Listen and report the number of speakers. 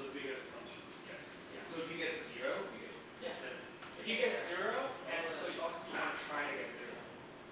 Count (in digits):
2